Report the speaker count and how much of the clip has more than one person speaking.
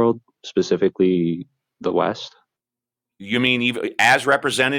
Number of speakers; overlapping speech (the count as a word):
two, no overlap